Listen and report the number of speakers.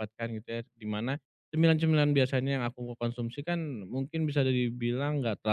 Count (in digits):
1